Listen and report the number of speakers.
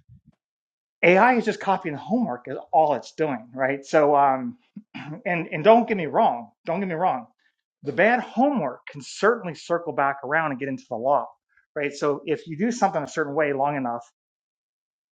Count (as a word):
one